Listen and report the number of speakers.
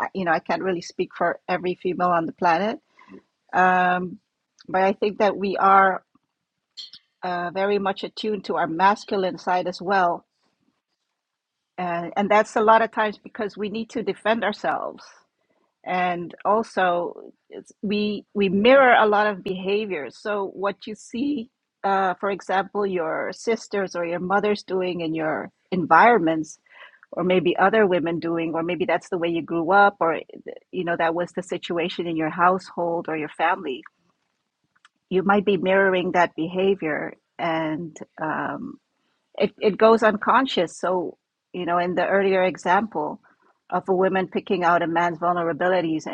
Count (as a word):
one